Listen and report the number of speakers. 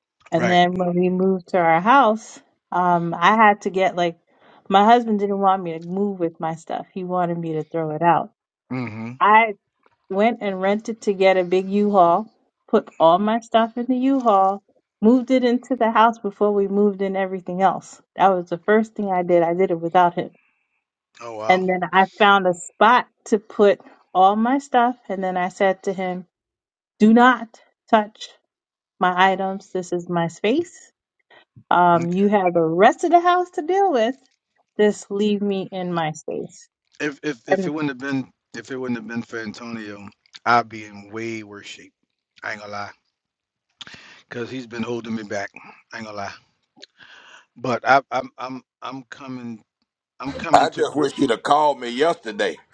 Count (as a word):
three